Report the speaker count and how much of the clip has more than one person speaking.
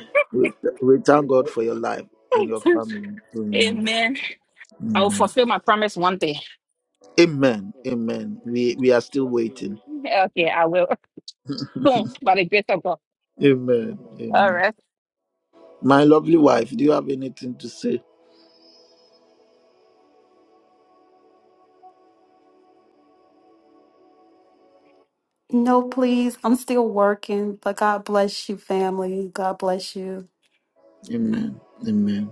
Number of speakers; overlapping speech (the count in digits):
3, about 3%